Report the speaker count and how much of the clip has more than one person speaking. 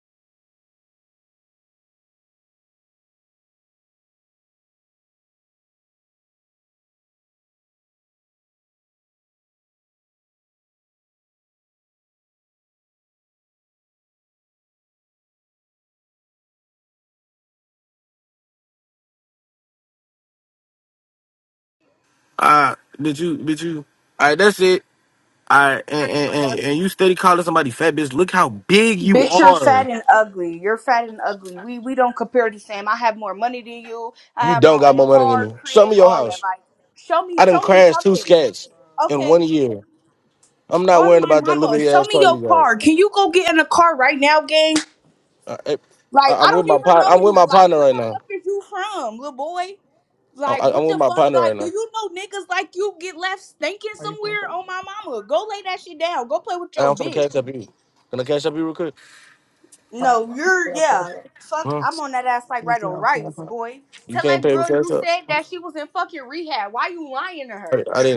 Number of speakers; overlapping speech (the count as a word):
two, about 16%